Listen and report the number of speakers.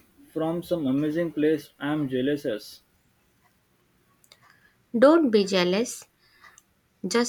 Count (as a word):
two